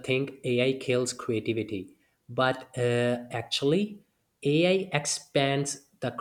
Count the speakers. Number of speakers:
1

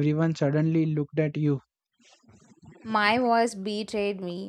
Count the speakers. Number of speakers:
2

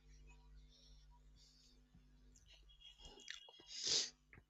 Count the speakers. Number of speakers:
0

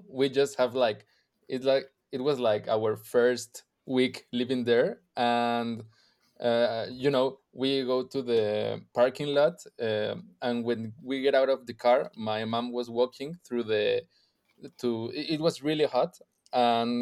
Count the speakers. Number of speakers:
1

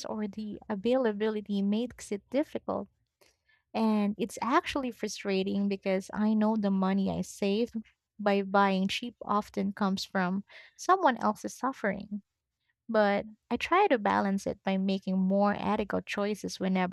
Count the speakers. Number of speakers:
1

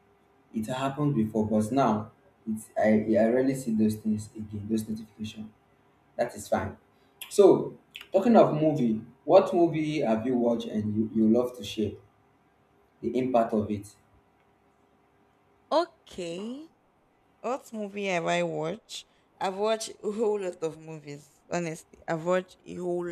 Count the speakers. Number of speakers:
2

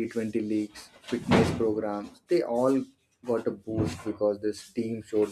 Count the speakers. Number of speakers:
1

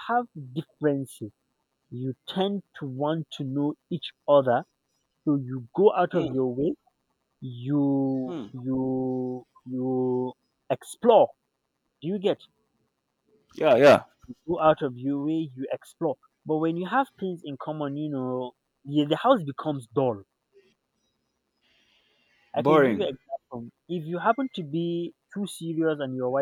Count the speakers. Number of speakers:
2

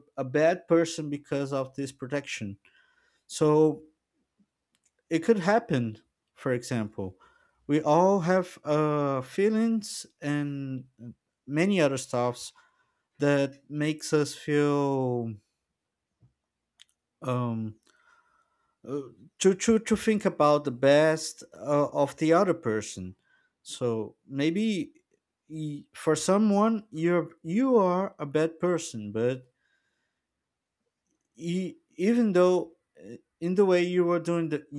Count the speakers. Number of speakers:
1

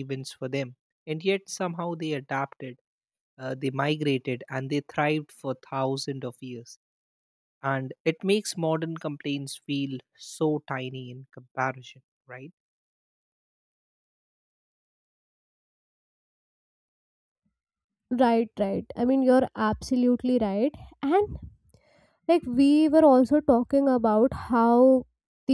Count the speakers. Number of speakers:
2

